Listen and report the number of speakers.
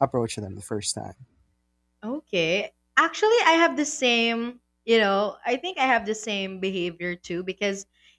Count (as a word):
two